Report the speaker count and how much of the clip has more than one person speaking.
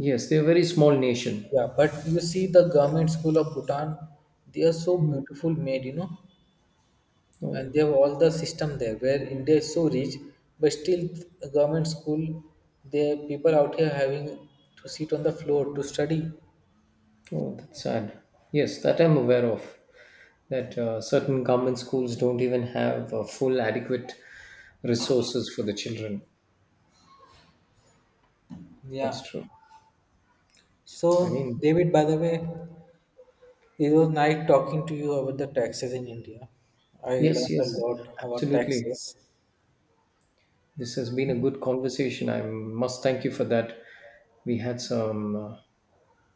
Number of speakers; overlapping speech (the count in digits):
2, about 5%